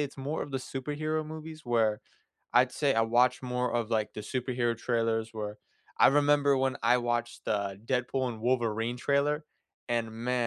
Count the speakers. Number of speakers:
1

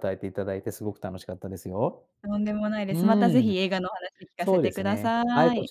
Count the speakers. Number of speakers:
2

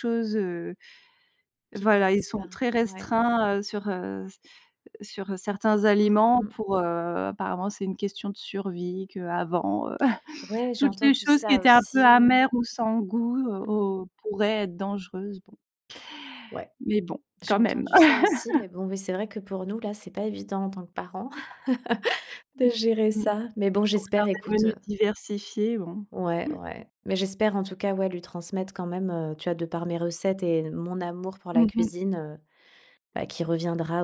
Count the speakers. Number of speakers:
2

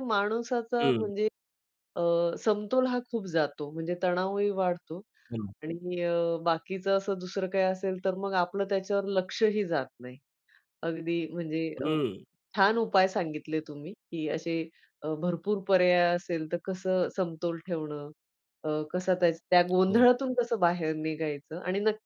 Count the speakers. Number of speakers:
2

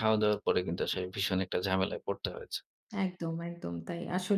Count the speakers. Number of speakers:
2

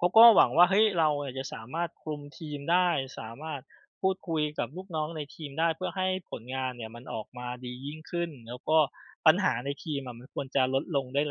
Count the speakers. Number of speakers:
1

